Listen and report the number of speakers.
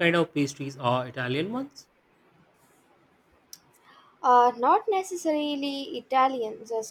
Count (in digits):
2